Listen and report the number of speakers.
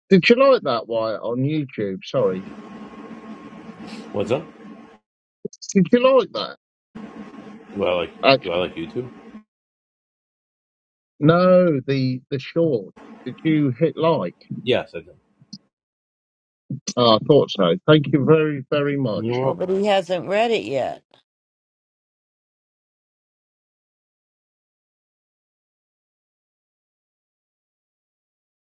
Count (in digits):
3